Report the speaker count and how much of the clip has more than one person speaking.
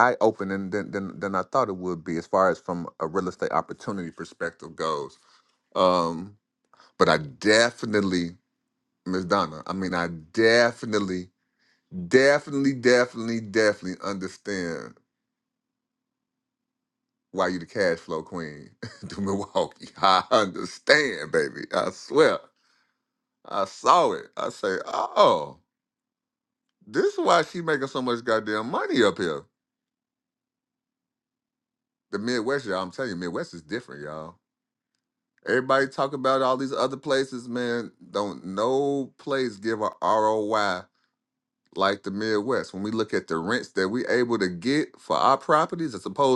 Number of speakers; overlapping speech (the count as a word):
one, no overlap